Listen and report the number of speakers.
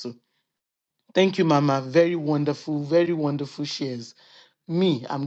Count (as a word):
one